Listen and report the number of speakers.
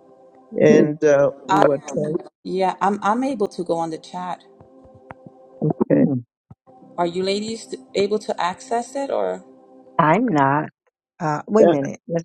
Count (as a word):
three